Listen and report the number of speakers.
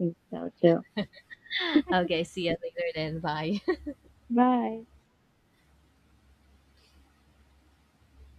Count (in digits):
2